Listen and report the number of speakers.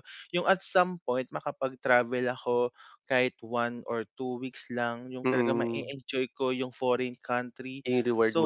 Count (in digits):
2